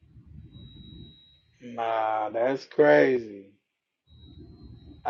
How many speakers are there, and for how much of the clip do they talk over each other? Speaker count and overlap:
1, no overlap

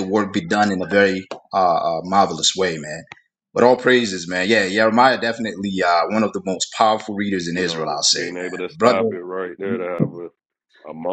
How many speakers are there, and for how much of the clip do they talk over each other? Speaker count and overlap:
2, about 15%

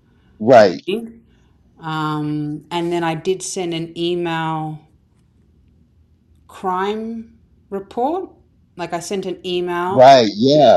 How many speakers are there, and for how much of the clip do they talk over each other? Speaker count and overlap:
2, about 2%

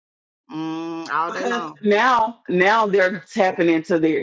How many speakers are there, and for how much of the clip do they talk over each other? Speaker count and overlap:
2, about 11%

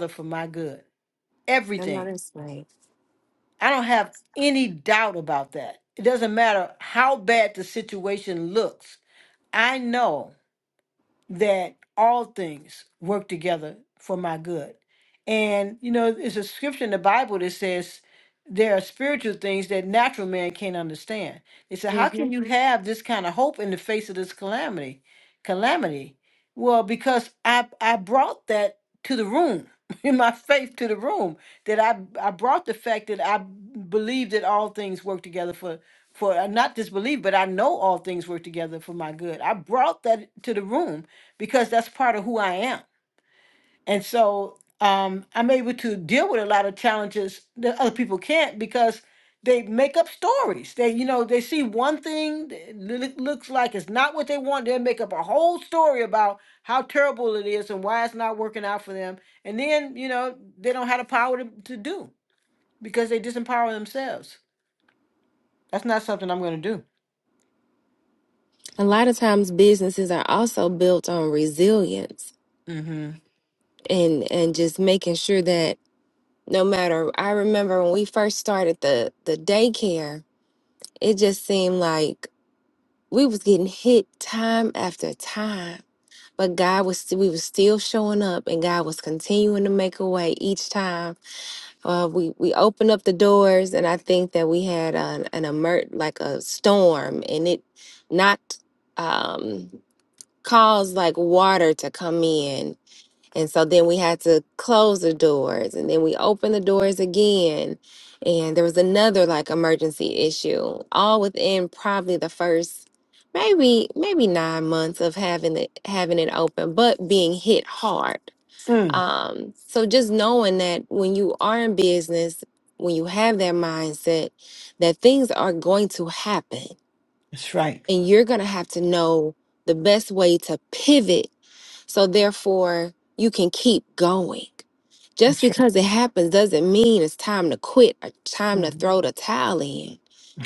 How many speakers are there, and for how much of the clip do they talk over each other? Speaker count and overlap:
2, about 1%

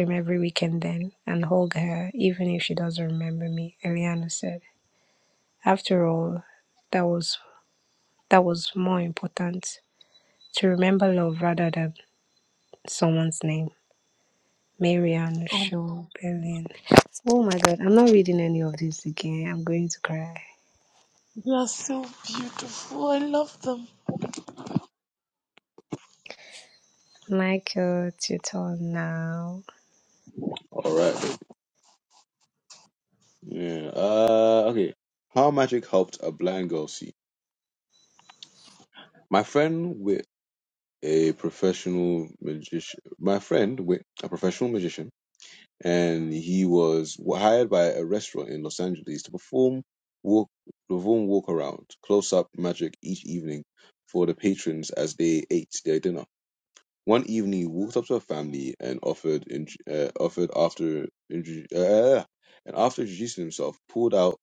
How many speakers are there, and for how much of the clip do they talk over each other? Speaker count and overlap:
3, under 1%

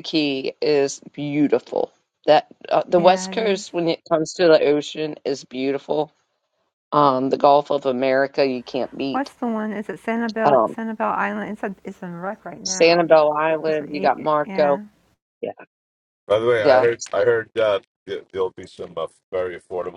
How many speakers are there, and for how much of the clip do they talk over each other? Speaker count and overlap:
3, about 14%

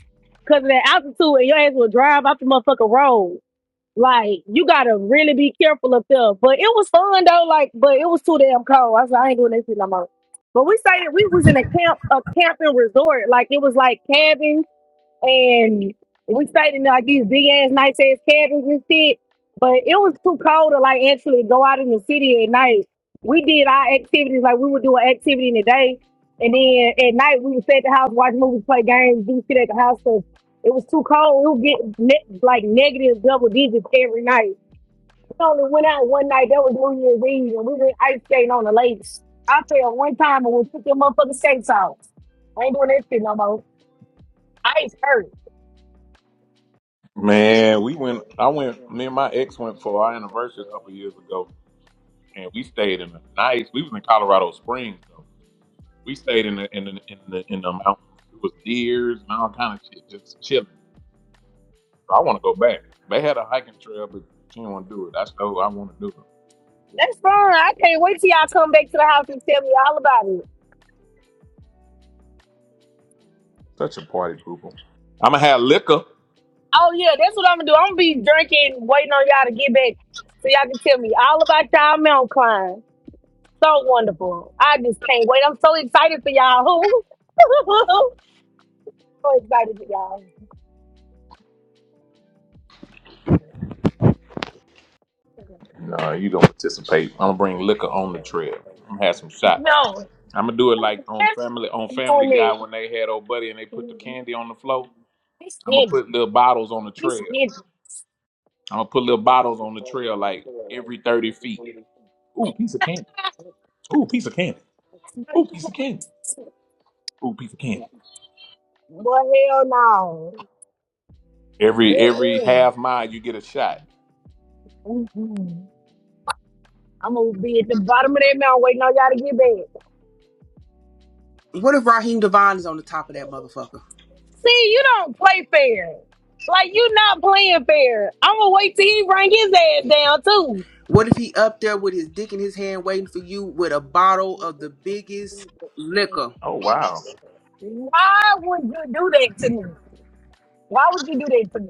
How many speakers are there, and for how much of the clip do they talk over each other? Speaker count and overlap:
3, about 2%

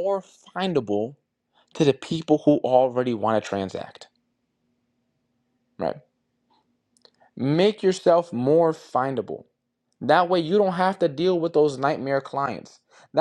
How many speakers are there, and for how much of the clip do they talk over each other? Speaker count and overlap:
1, no overlap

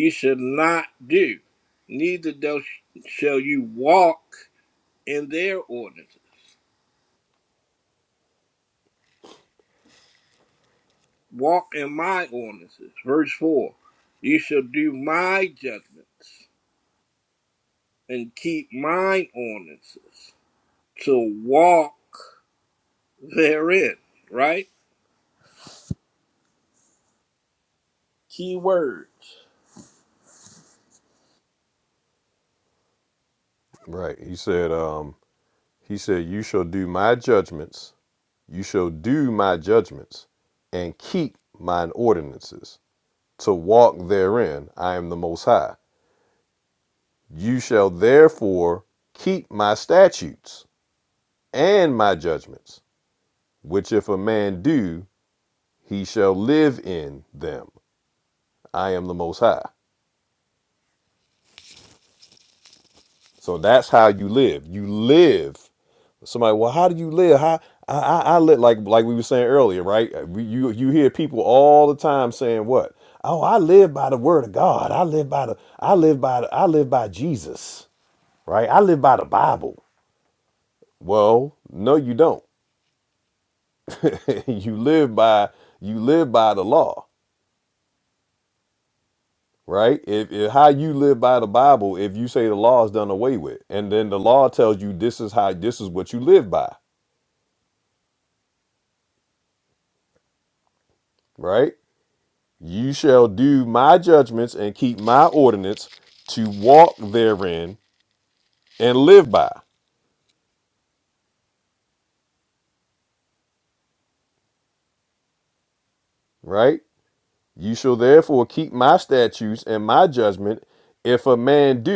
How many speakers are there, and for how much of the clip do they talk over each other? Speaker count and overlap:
2, no overlap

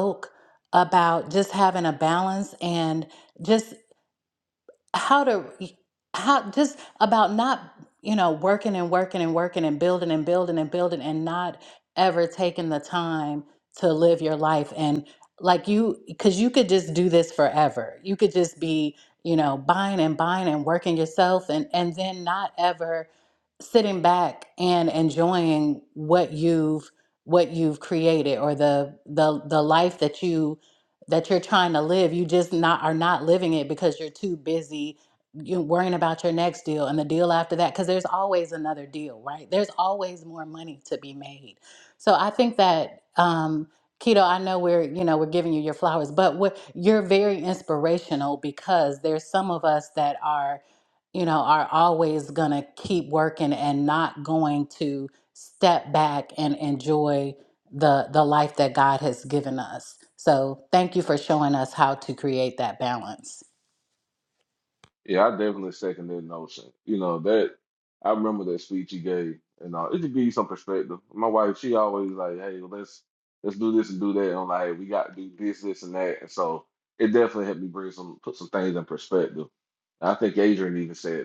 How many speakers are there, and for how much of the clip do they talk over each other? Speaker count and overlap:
2, no overlap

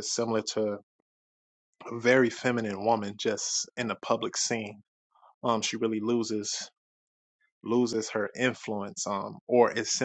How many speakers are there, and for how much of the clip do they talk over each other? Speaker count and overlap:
1, no overlap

